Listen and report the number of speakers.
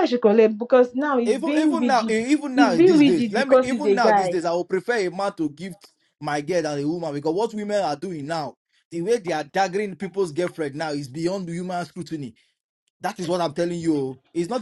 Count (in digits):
2